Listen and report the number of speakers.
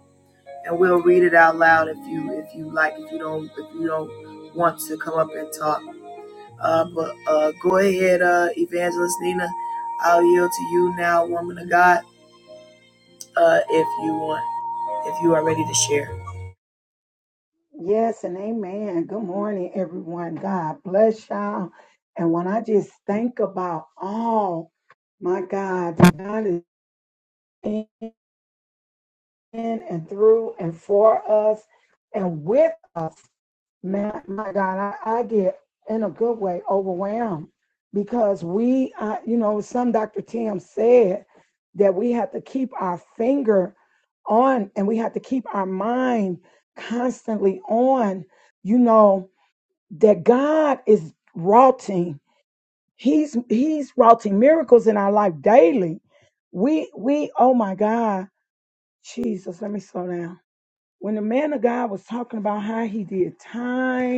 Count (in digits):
2